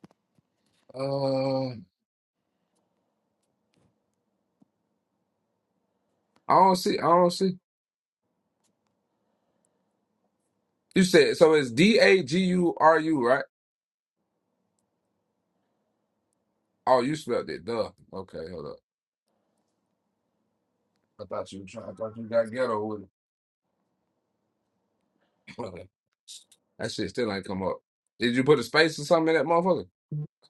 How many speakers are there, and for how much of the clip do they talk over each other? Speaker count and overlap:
1, no overlap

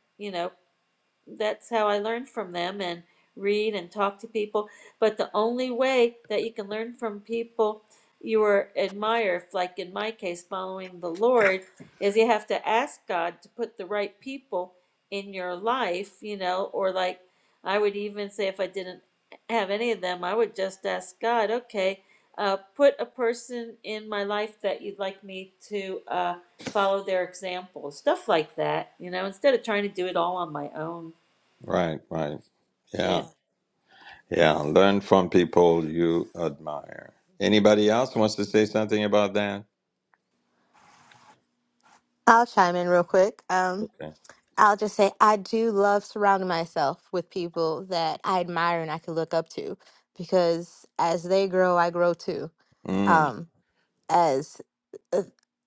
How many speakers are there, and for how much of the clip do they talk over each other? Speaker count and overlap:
3, about 1%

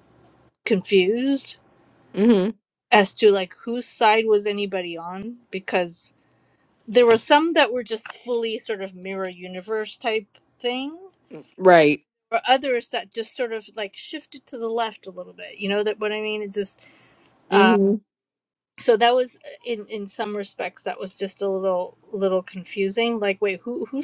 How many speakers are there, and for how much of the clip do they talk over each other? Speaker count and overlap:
2, about 1%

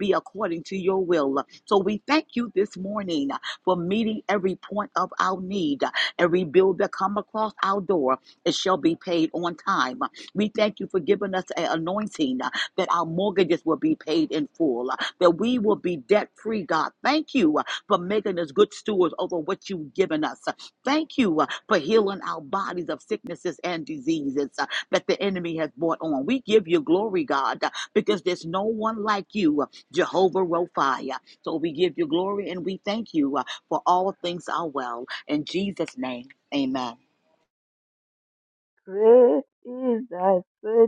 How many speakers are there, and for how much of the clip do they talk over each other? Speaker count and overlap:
2, no overlap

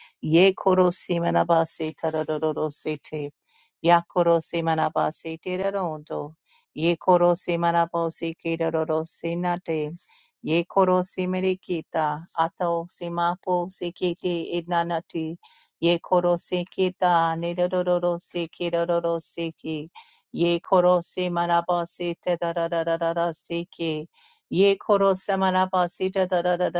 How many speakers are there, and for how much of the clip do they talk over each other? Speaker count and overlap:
1, no overlap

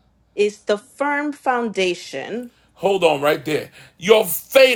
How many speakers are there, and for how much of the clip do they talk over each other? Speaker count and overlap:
2, no overlap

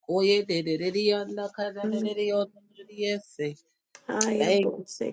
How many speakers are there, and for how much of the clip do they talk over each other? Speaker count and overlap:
2, about 11%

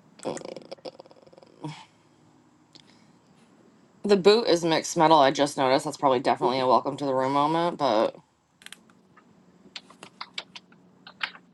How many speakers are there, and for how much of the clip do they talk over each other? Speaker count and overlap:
1, no overlap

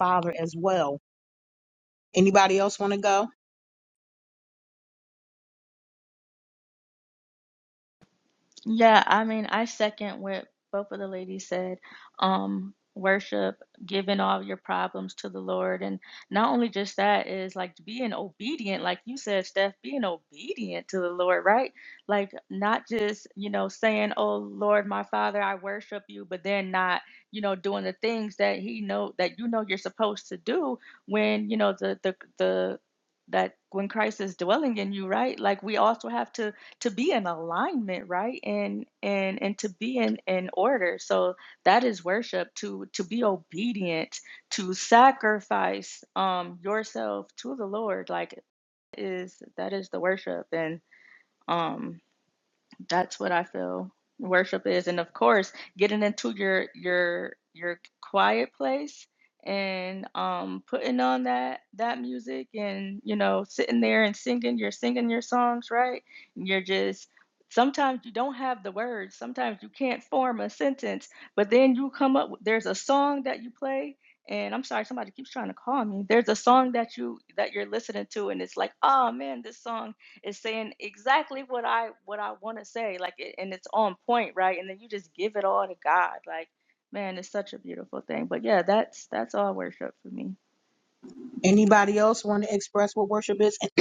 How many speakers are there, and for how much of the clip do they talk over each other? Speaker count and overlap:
2, no overlap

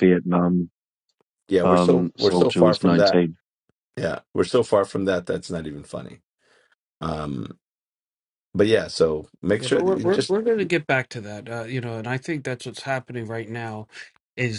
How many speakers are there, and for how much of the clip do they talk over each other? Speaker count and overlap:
3, about 15%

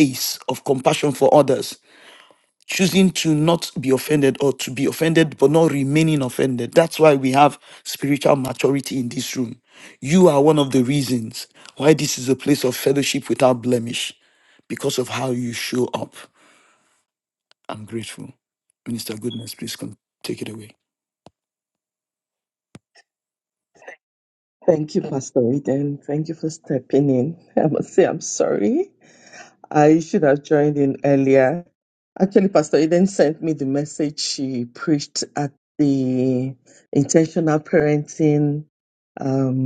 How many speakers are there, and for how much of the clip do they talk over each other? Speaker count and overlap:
2, no overlap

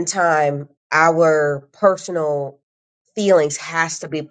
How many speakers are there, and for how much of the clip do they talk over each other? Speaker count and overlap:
1, no overlap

